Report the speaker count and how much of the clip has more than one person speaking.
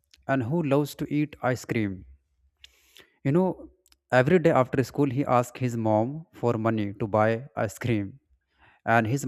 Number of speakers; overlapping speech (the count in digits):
1, no overlap